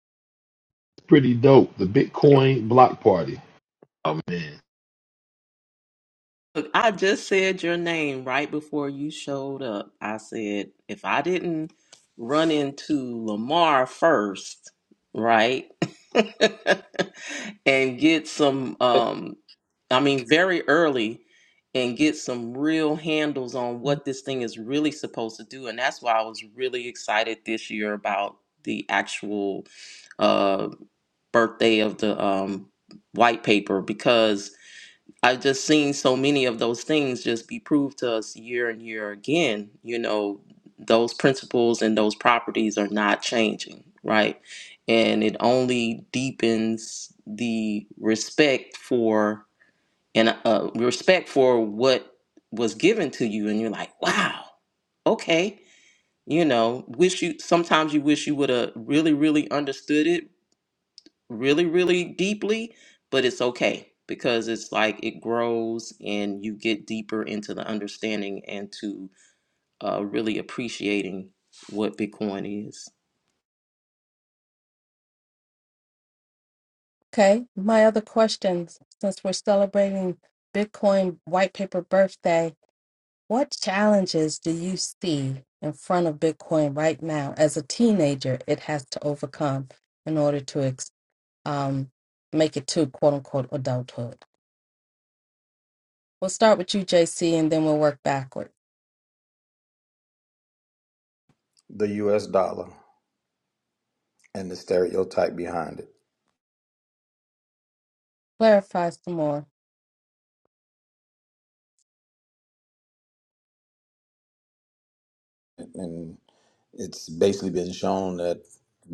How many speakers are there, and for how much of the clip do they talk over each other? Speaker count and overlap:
4, under 1%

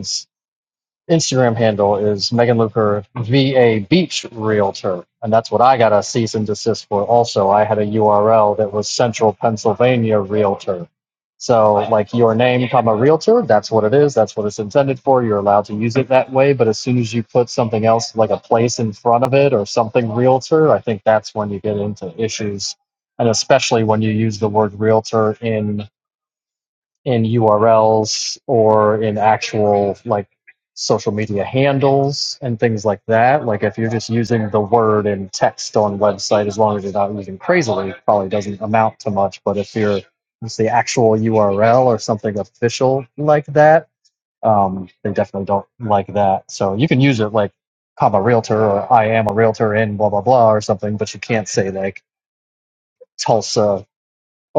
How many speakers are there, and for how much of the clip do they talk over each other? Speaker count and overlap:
1, no overlap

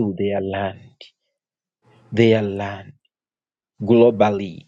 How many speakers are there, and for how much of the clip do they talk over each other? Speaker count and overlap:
1, no overlap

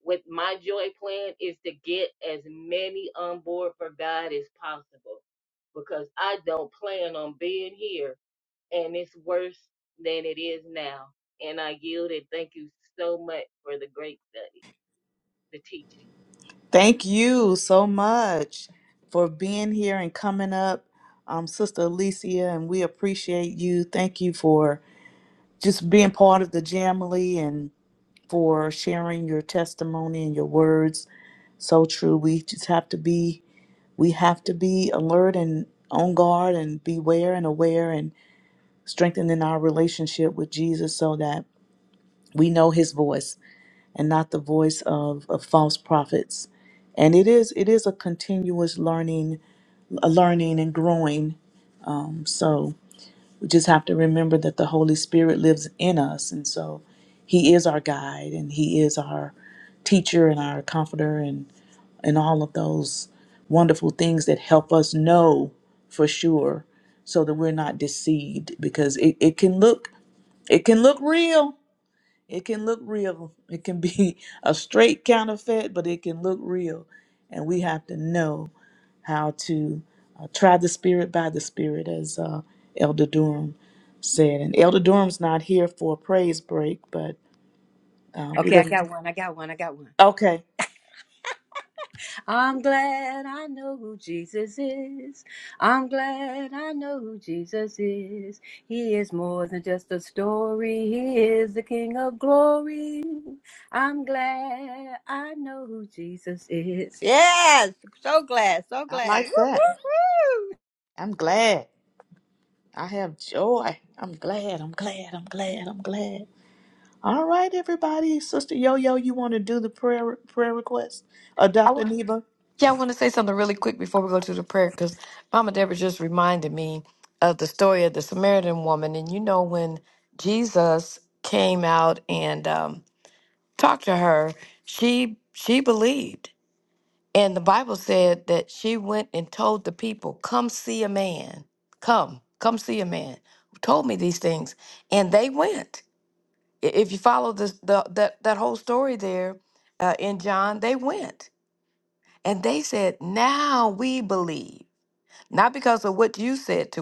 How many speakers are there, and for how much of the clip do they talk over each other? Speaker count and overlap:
4, about 1%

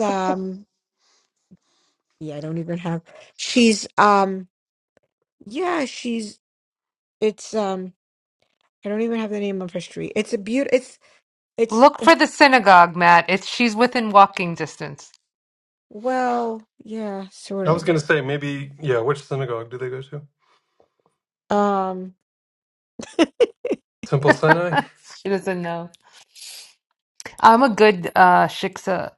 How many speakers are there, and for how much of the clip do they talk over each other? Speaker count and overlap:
3, about 1%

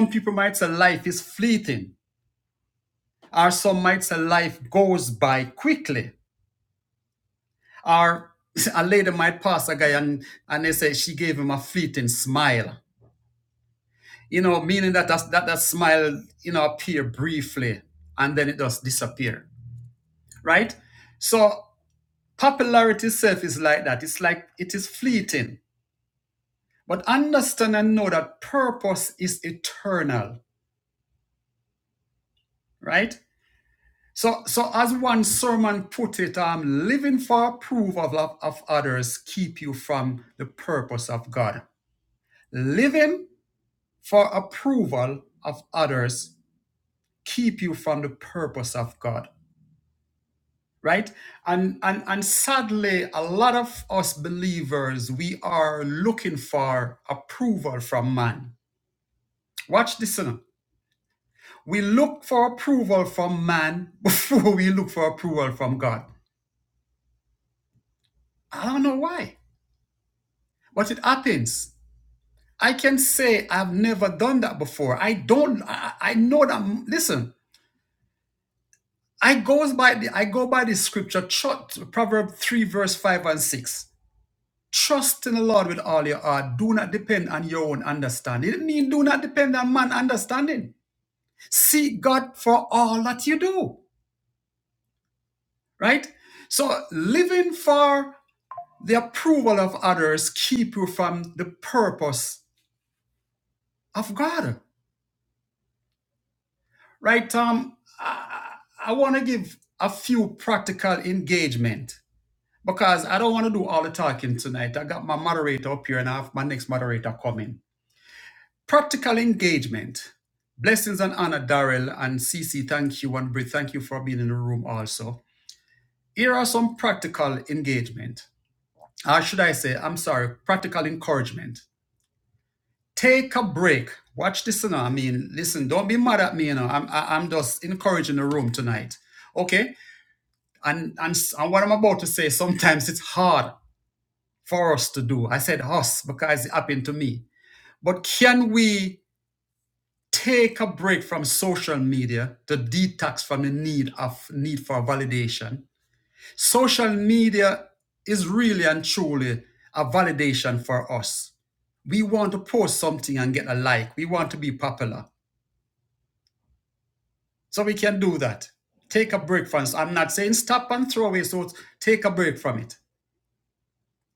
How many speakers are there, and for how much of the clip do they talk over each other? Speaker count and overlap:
1, no overlap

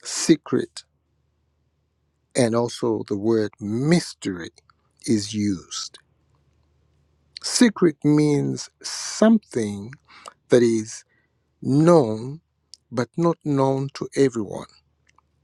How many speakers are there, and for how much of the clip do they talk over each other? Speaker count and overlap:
1, no overlap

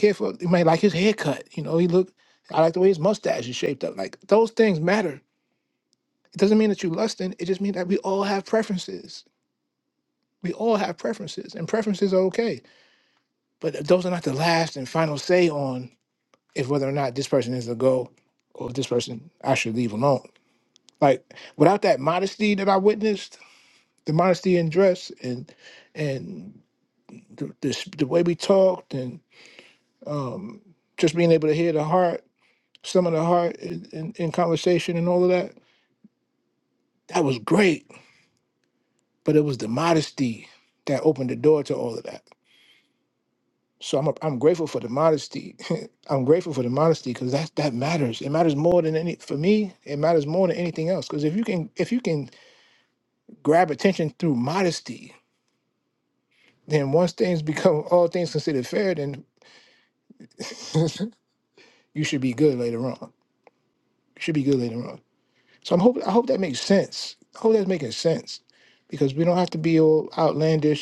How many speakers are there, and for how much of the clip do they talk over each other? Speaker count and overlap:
1, no overlap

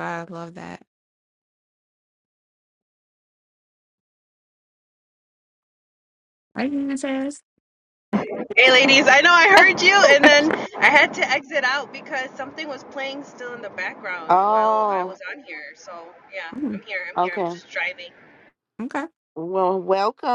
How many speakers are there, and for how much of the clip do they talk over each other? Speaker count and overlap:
3, about 8%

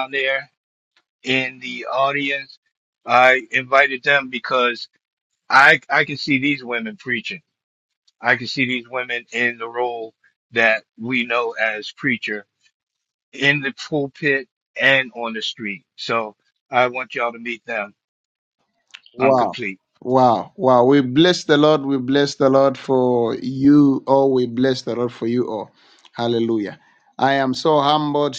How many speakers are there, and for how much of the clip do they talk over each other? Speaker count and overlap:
2, about 1%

